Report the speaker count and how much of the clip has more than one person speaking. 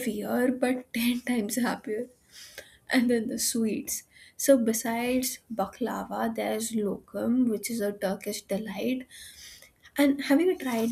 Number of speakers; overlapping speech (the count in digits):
1, no overlap